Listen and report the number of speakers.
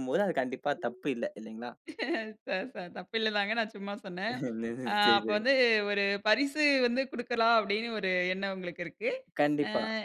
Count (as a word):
two